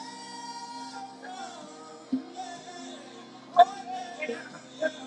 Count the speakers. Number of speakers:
0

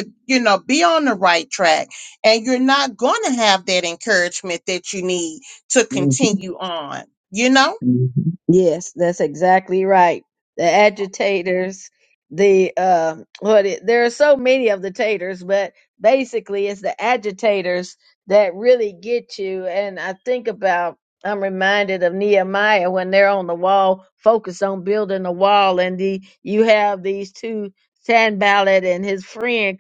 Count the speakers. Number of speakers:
2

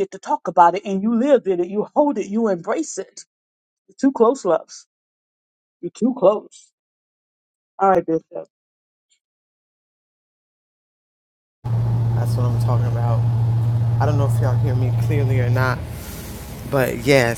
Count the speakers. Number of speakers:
2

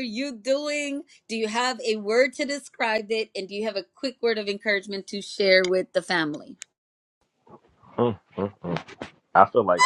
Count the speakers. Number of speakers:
2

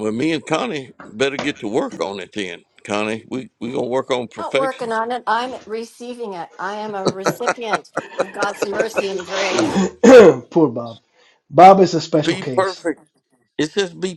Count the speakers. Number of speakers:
3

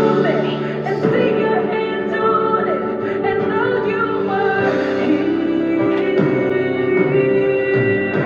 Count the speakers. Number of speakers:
0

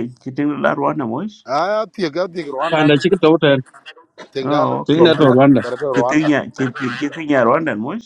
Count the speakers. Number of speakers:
3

